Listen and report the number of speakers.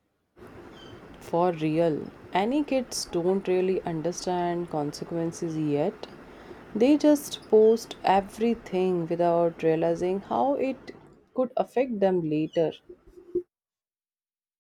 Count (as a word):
one